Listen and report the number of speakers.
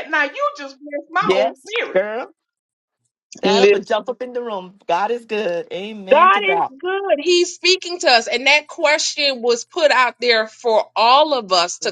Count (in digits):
3